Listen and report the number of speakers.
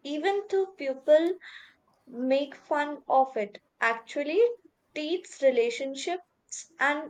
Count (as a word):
one